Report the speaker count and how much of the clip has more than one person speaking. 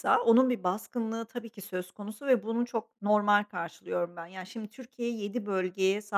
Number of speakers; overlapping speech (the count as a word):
one, no overlap